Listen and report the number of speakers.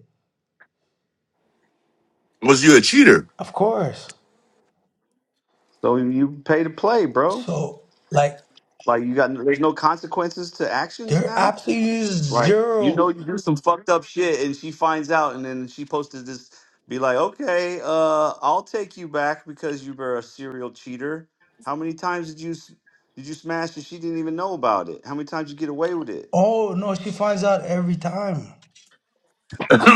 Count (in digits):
3